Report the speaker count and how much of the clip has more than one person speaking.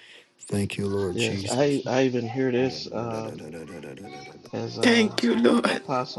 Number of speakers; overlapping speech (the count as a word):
three, about 35%